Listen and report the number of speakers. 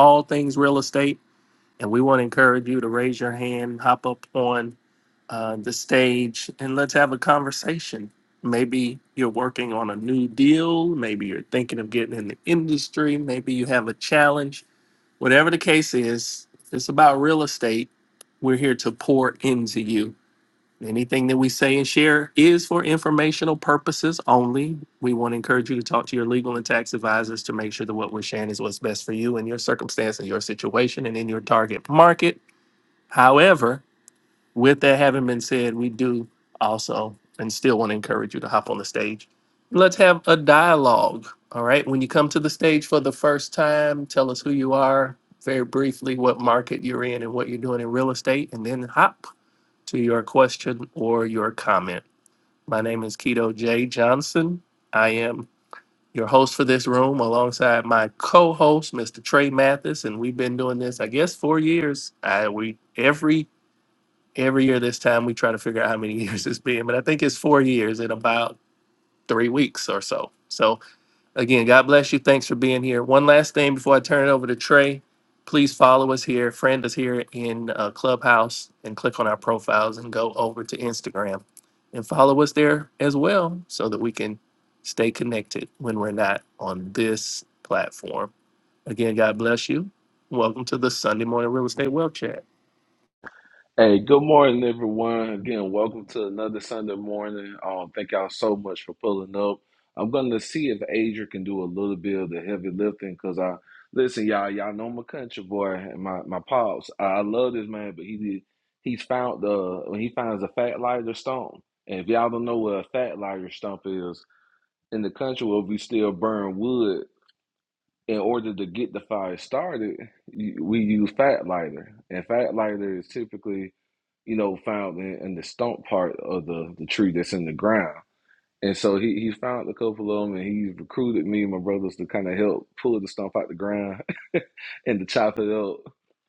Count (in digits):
2